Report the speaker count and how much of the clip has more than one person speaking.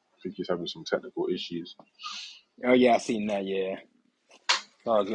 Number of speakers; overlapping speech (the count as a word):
two, no overlap